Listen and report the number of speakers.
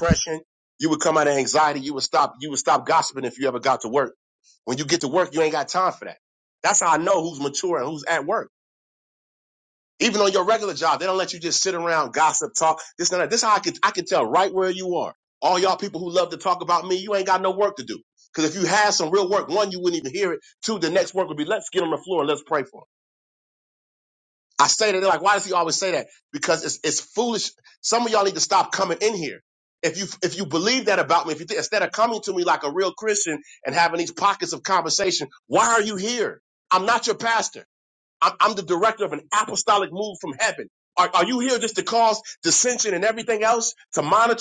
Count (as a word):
one